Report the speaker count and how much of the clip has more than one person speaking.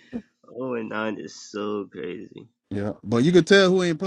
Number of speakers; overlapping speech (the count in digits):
2, no overlap